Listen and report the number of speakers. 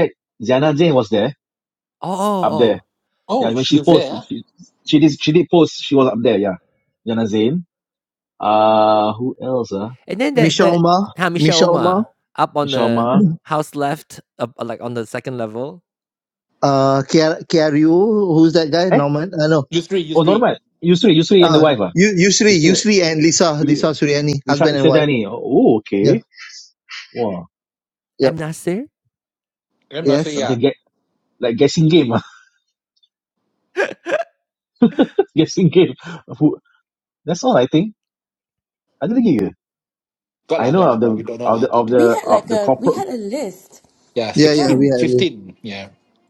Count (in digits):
5